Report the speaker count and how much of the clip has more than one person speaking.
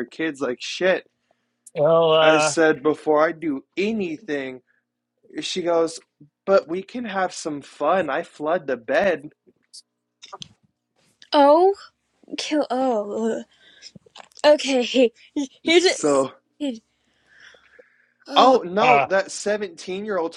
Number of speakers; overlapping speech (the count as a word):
three, about 6%